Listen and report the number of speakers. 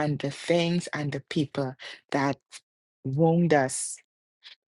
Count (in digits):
1